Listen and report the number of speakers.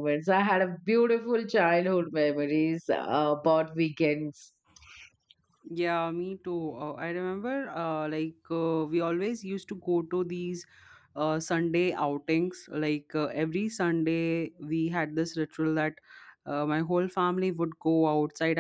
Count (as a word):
two